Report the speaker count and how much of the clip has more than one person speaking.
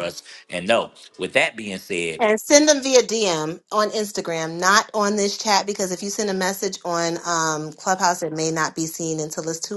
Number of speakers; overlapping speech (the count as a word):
two, under 1%